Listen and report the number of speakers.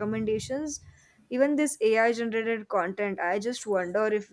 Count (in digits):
1